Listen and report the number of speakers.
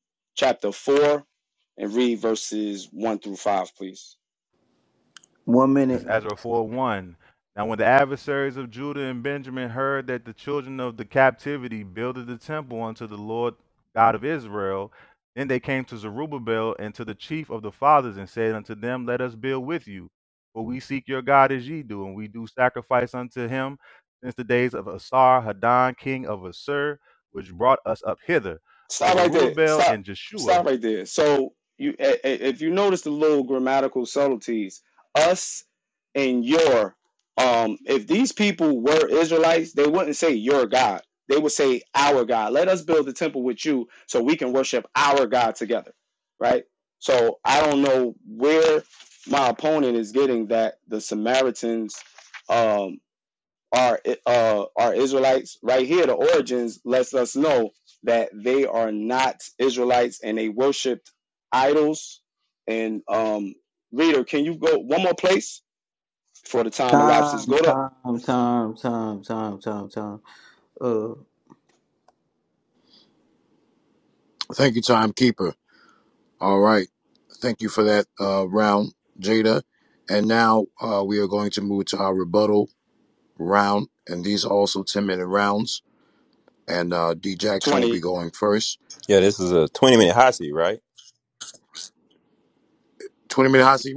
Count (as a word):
five